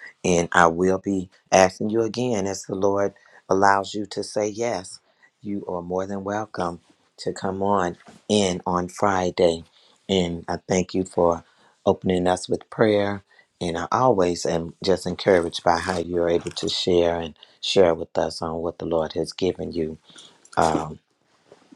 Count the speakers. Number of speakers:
1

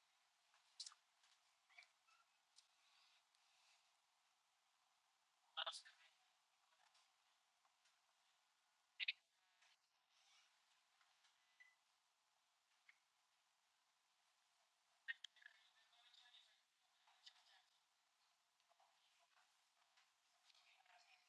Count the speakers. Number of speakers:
0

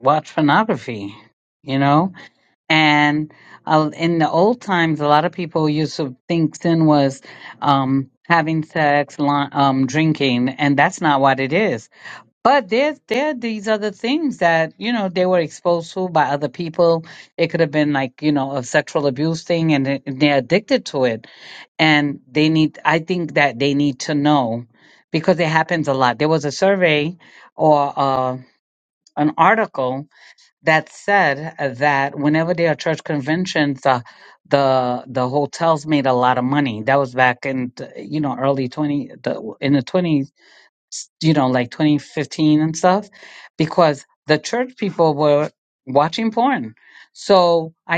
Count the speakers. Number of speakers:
1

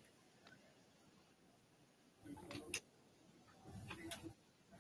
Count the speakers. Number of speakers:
0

